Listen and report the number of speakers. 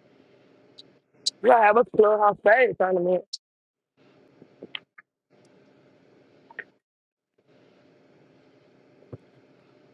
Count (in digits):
1